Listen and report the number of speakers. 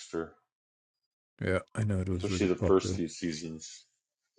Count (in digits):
2